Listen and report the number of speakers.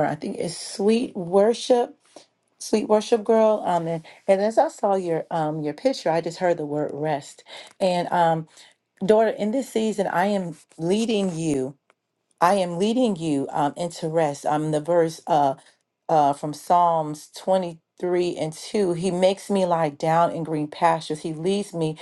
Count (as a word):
one